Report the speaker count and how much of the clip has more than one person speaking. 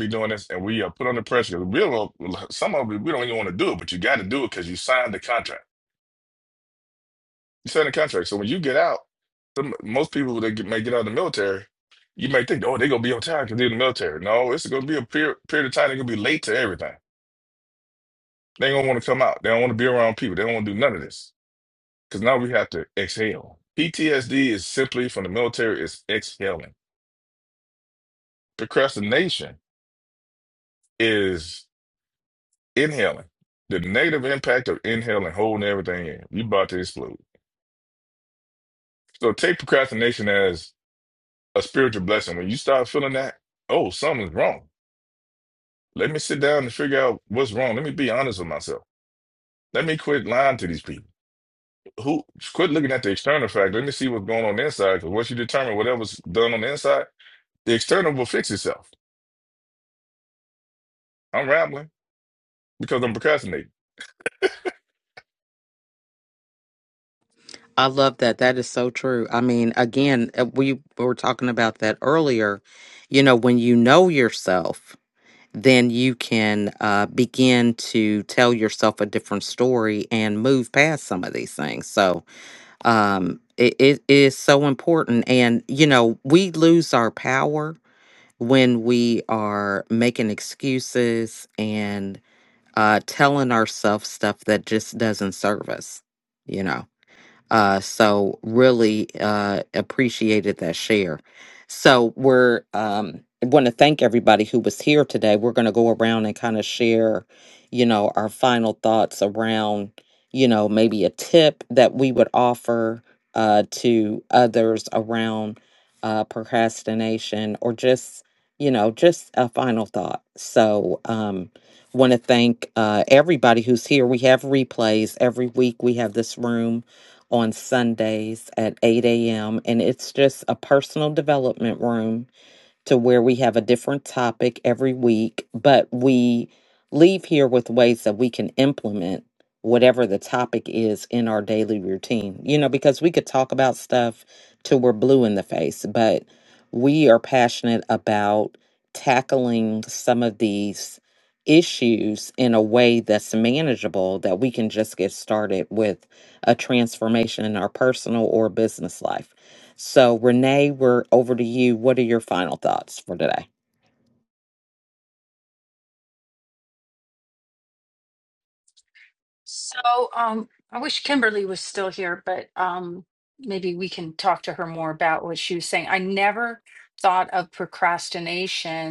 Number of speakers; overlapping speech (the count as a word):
three, no overlap